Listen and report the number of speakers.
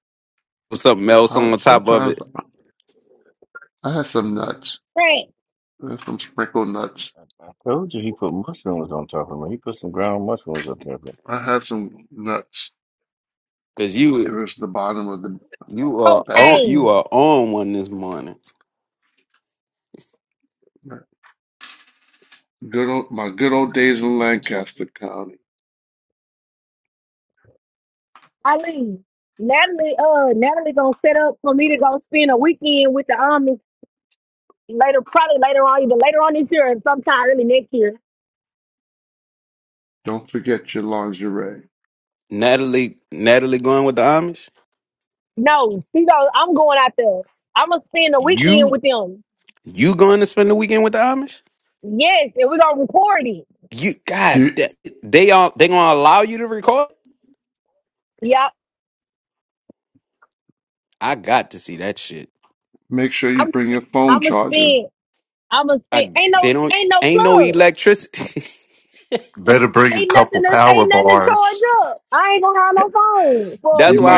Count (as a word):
five